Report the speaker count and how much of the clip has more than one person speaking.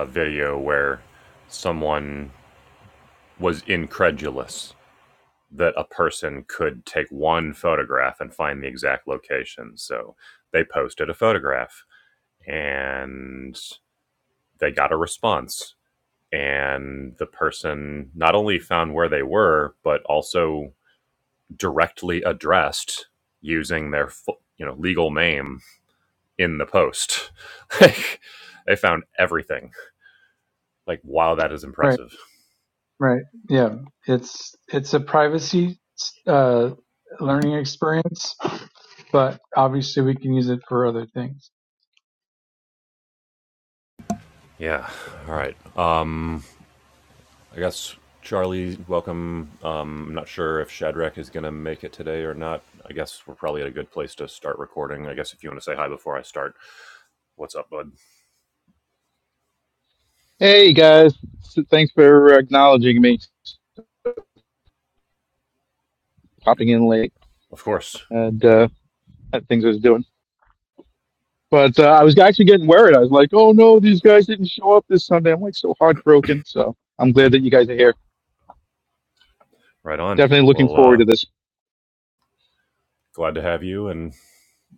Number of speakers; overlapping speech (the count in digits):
3, about 1%